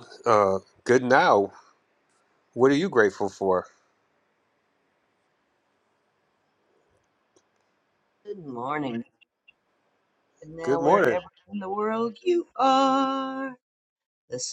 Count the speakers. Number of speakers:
two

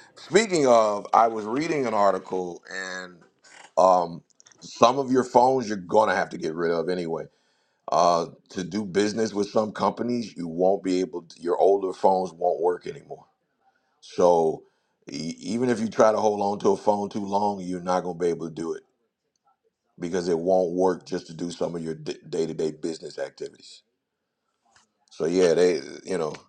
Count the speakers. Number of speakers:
one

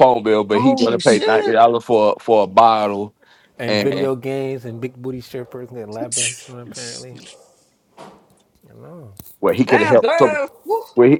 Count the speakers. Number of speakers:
three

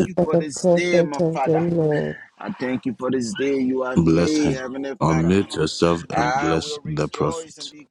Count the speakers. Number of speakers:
three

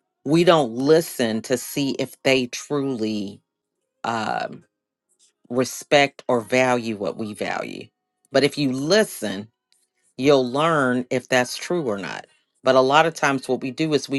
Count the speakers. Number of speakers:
one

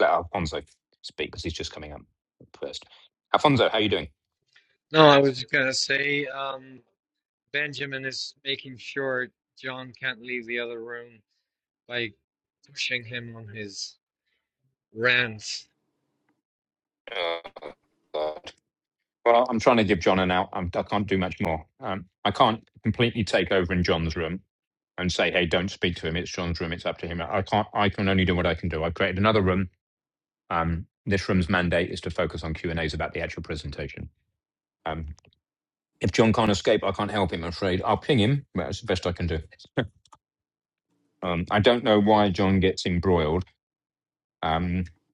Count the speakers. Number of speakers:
two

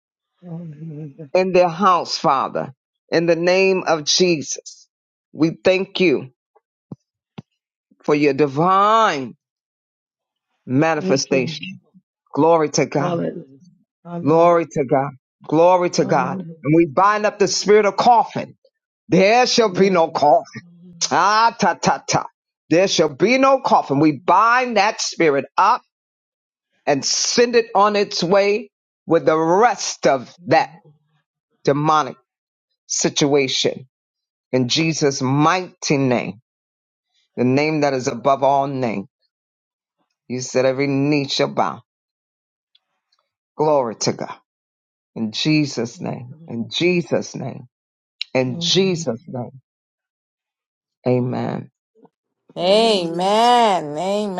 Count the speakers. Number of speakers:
three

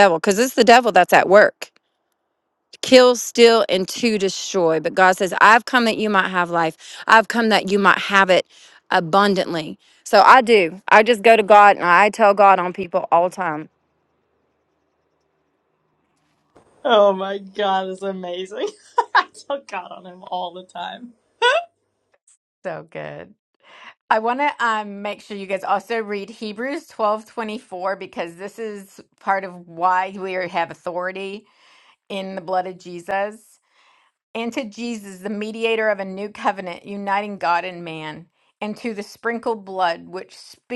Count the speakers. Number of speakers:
three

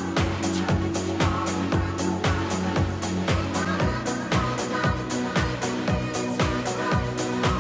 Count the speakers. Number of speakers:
zero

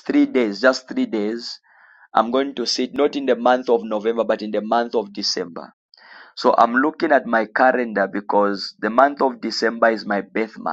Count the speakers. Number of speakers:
one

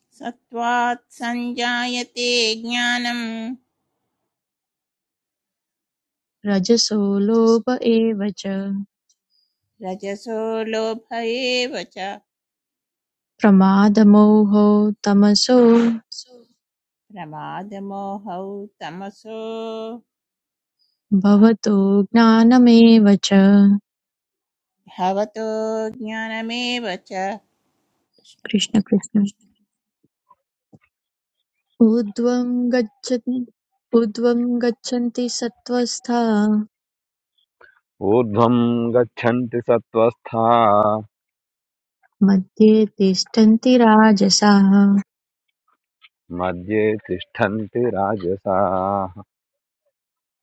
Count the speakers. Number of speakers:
three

